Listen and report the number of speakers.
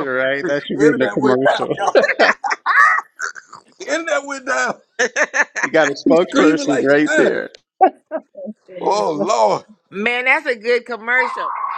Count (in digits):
3